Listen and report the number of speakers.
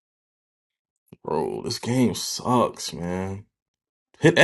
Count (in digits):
1